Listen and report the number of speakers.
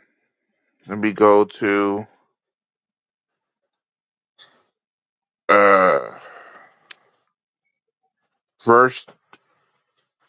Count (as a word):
one